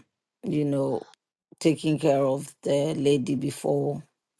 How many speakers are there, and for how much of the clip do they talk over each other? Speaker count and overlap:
1, no overlap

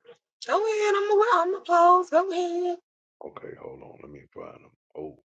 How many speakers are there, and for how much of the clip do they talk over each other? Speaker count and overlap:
2, no overlap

